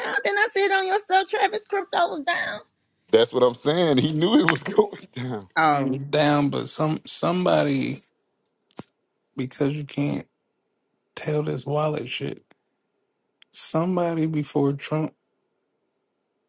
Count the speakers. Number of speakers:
three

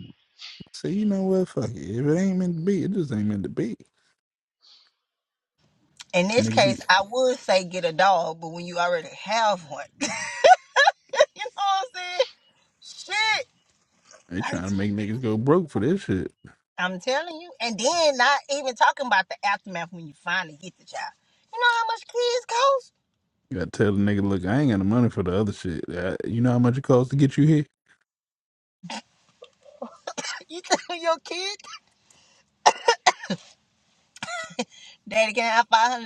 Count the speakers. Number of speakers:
two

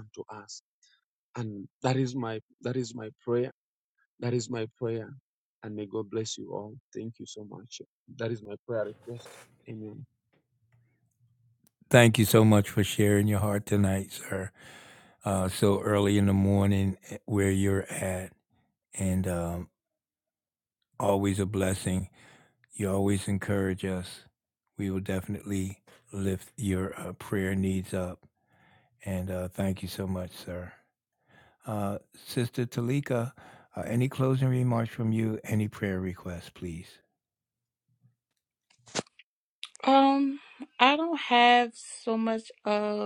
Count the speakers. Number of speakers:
three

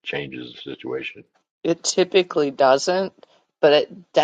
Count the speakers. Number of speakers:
two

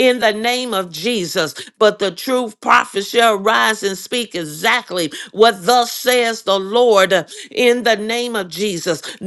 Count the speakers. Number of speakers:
one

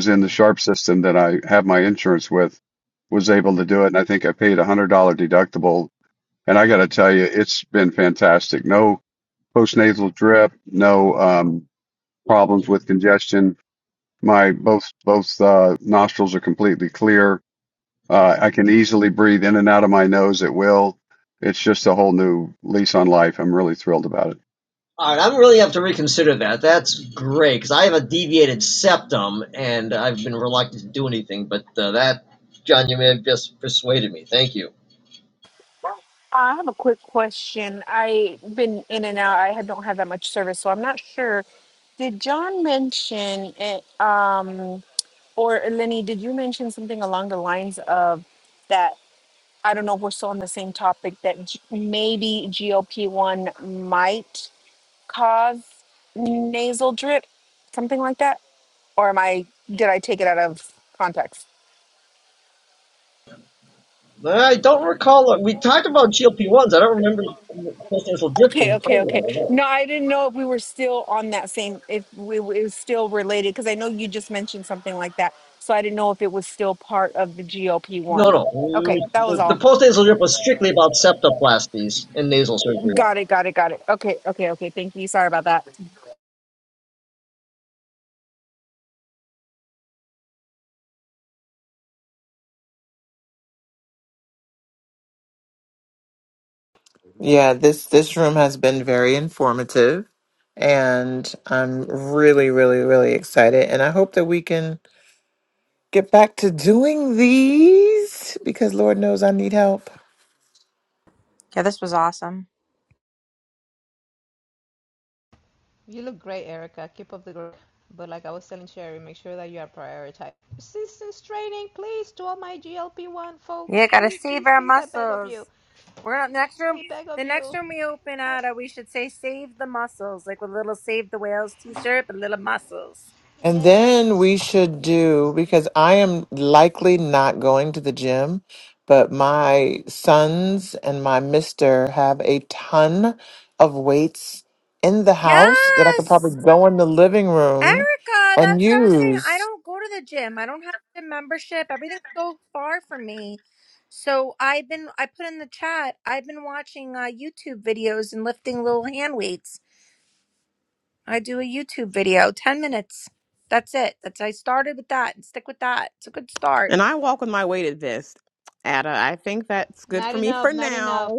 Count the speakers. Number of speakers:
seven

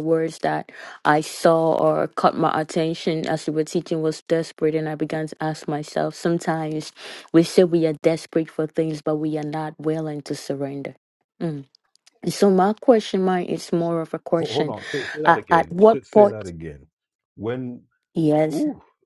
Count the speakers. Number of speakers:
two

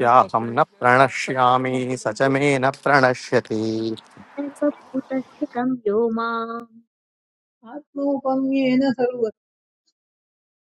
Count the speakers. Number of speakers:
three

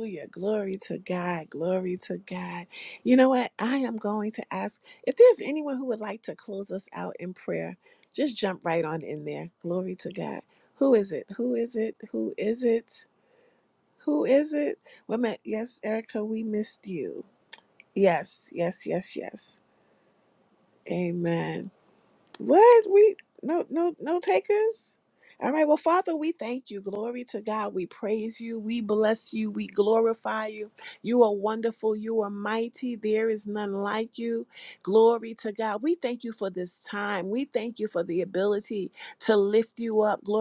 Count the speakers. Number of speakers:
one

